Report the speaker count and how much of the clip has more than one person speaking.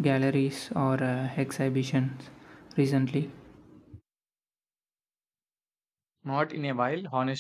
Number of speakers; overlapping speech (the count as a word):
two, no overlap